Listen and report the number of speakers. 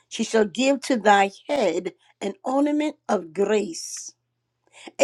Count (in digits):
1